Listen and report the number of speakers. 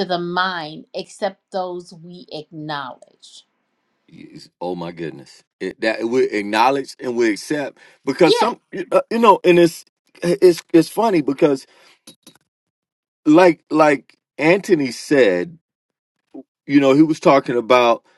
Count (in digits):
2